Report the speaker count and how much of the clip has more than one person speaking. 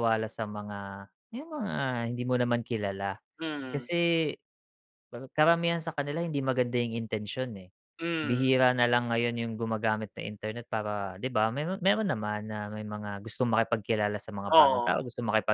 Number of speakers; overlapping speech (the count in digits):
2, about 6%